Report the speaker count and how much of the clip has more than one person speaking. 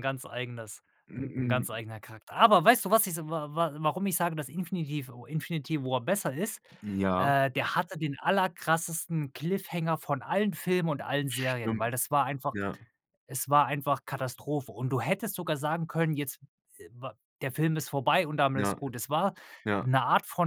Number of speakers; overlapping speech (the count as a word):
two, about 5%